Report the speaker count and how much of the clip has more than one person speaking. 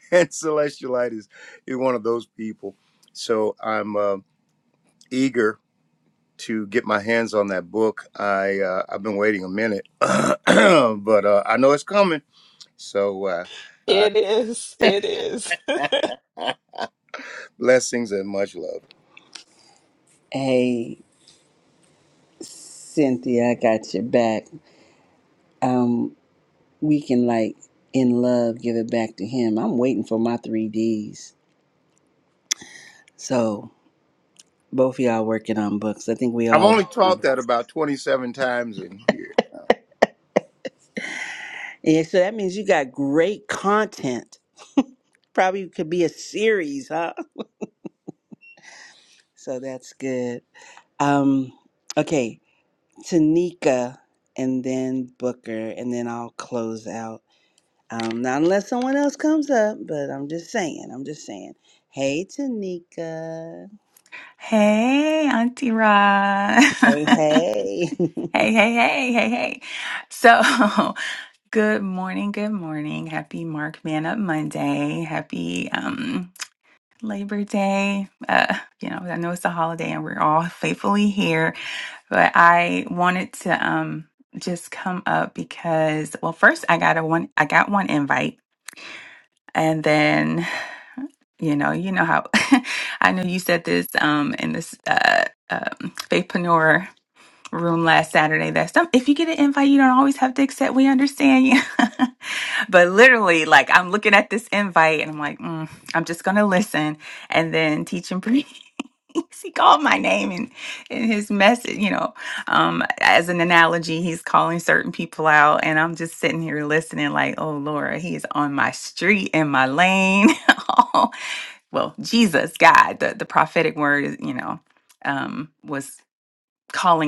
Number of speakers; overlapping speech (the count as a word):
four, under 1%